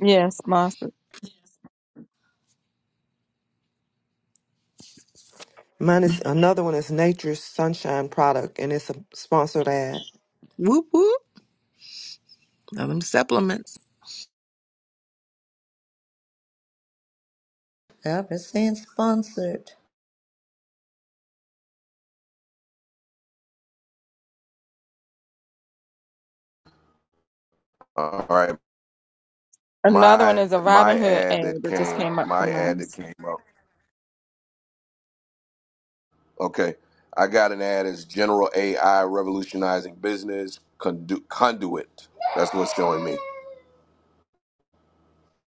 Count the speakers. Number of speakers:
5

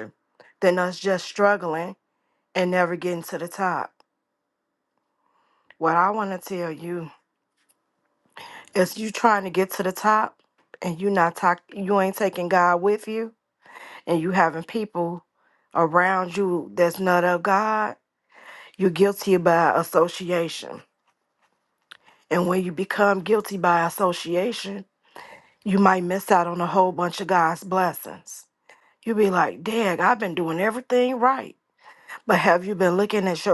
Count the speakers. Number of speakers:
1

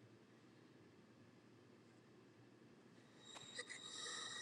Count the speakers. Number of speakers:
0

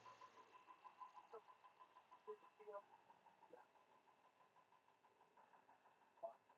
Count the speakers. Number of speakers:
0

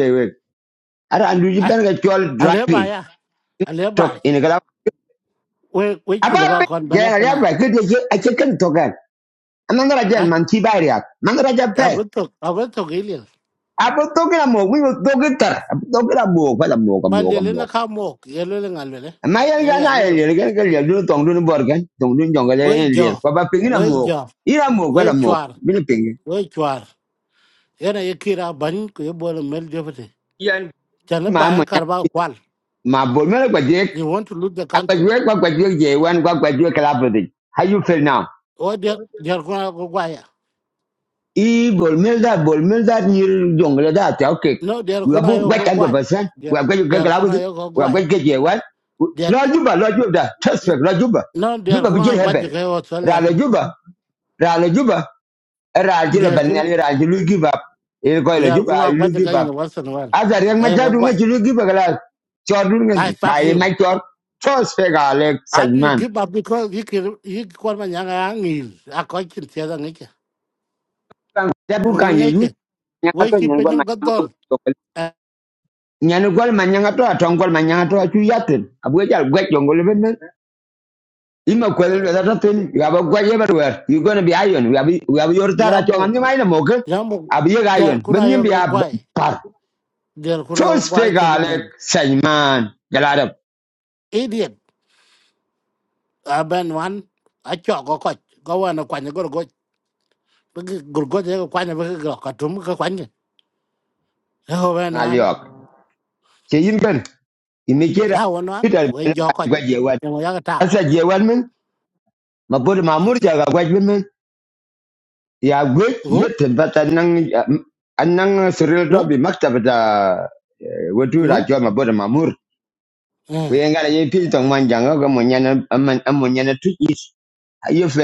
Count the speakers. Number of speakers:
2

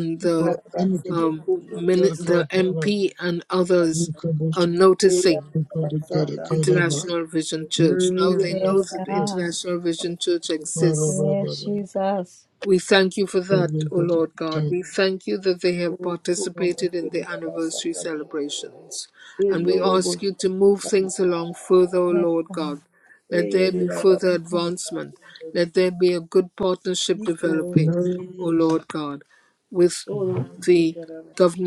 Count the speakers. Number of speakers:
4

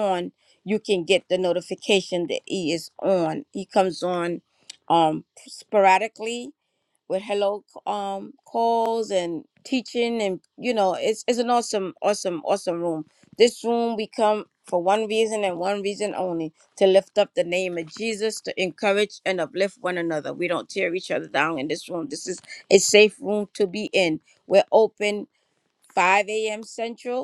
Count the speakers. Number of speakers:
1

